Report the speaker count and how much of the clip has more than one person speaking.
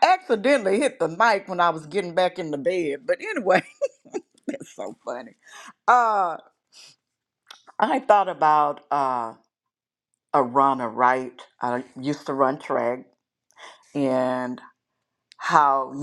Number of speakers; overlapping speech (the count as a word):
one, no overlap